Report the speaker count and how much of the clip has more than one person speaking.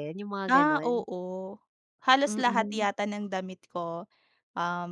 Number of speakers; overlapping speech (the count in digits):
2, about 23%